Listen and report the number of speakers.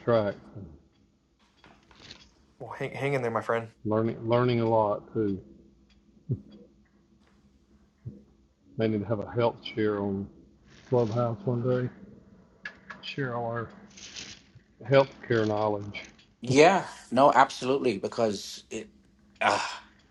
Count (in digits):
3